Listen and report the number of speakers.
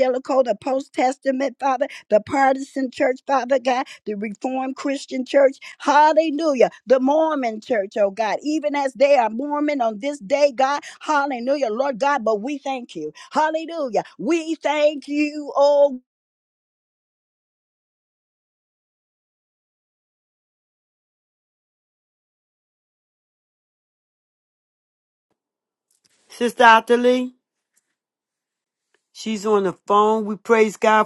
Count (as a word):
two